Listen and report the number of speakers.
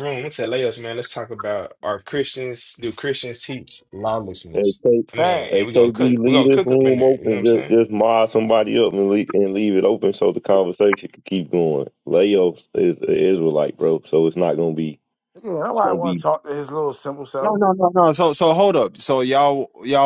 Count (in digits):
4